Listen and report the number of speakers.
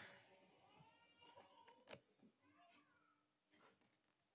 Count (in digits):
0